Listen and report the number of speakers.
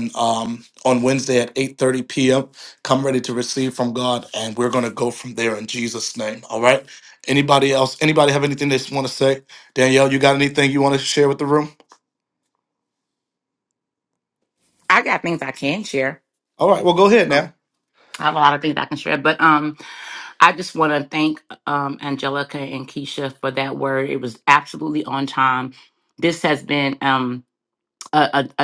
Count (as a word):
two